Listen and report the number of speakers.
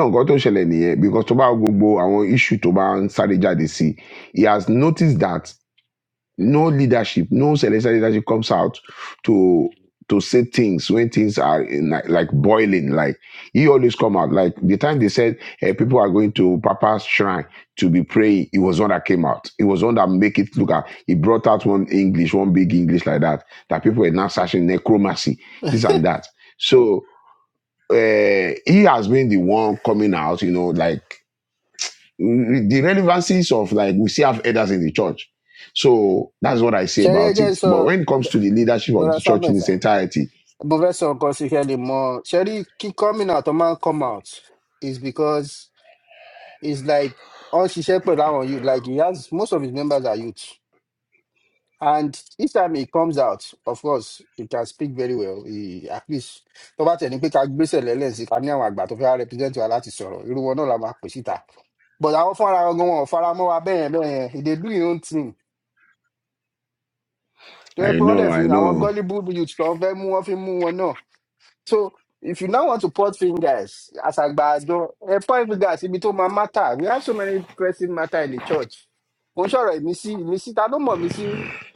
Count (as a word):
two